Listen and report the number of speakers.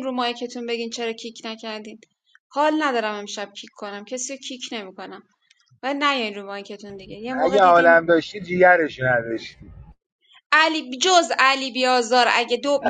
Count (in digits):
2